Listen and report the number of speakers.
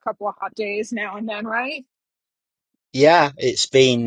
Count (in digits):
2